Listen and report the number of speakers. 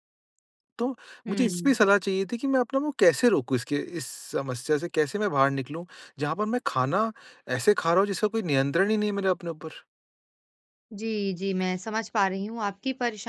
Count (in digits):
2